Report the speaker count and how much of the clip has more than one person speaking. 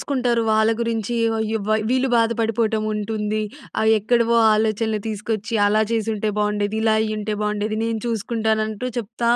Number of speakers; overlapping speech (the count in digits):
1, no overlap